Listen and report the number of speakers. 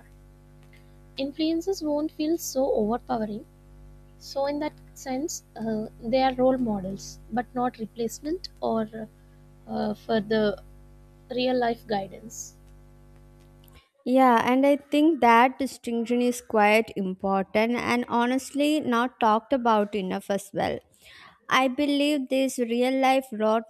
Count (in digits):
2